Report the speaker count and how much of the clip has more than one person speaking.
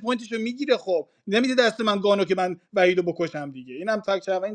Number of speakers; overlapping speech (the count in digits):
1, no overlap